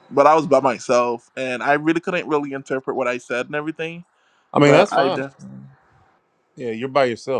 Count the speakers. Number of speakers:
2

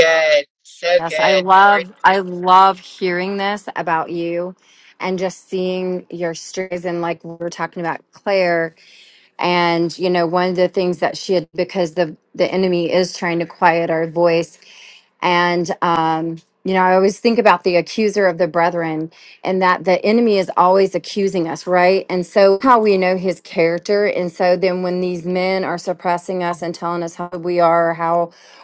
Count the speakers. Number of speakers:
2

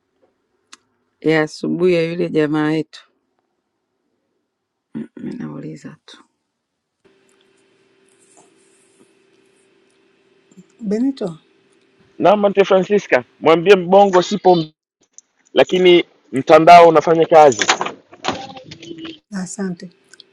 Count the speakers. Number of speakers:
3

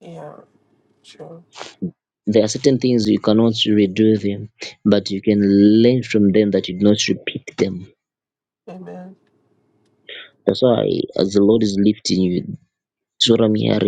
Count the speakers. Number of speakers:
2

